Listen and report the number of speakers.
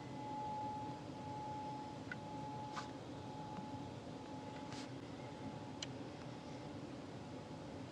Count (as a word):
zero